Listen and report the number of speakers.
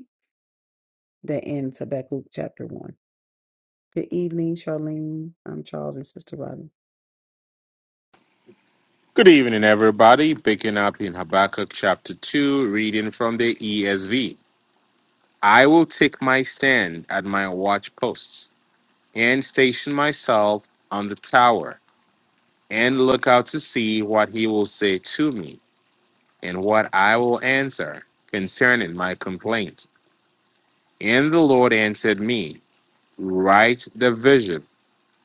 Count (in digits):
2